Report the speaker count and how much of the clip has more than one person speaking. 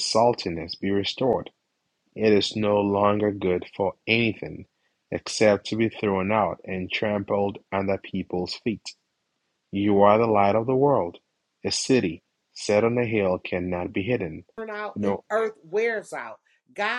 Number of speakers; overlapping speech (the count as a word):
two, about 1%